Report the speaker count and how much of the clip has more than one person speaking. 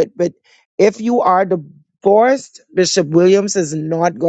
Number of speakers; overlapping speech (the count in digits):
1, no overlap